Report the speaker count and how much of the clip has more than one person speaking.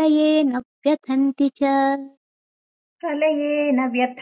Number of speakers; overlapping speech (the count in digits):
2, no overlap